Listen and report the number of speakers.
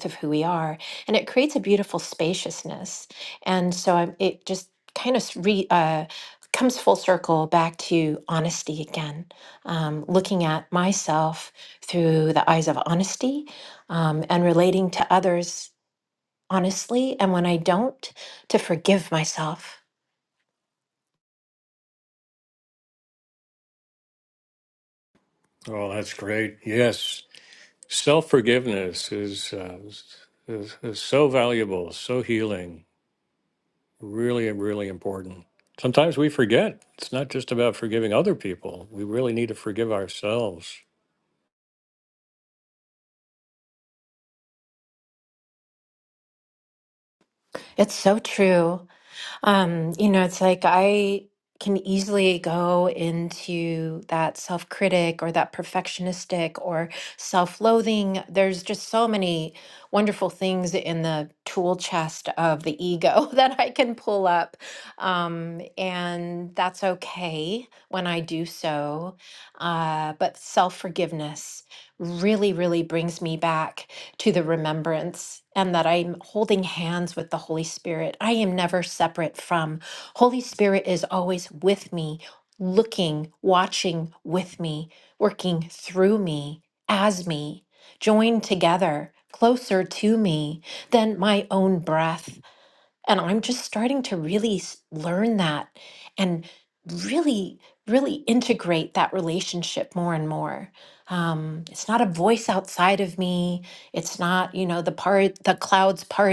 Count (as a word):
two